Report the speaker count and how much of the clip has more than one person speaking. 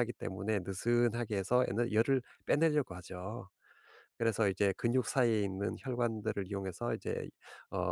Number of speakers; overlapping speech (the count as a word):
one, no overlap